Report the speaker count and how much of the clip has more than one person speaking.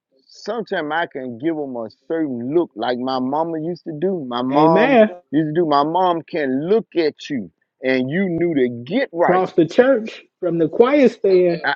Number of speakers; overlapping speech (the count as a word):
two, about 5%